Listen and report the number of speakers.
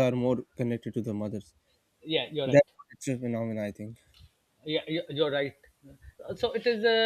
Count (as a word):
two